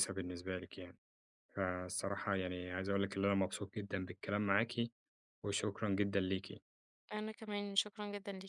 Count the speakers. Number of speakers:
two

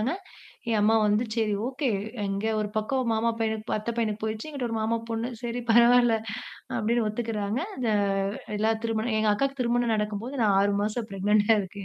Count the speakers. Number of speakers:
one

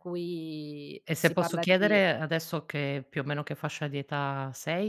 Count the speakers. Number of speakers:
two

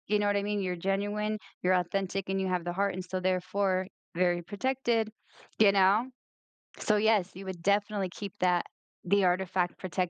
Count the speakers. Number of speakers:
one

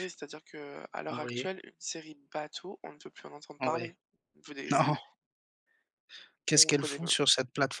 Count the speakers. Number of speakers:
two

